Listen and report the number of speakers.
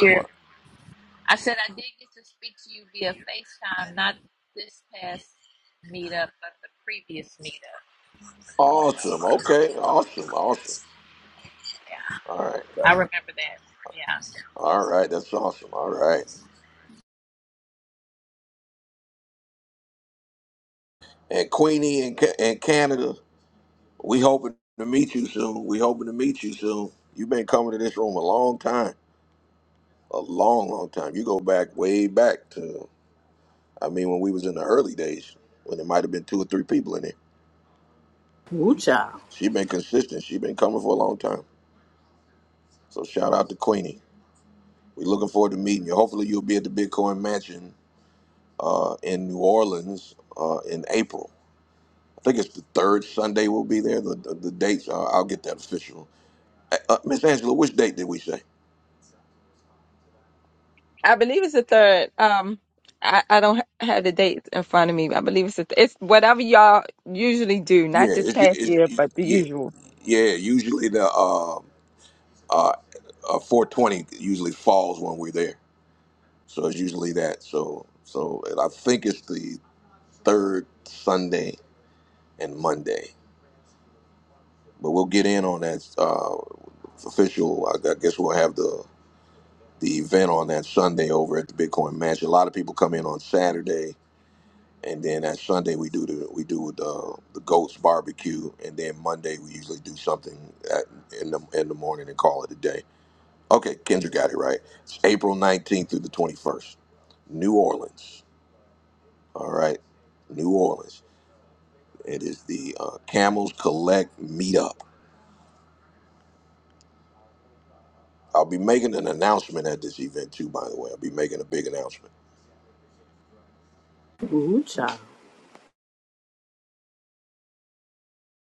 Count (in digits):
4